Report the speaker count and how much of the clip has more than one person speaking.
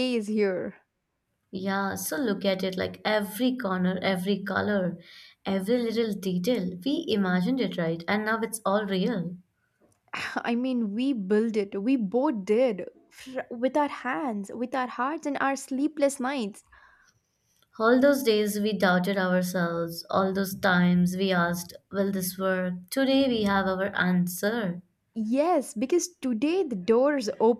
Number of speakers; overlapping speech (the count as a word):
two, no overlap